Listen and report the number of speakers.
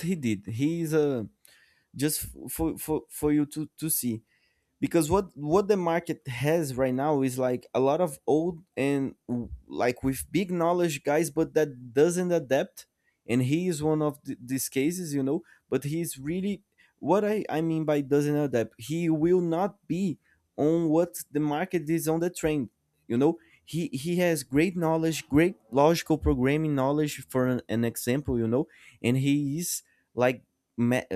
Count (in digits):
1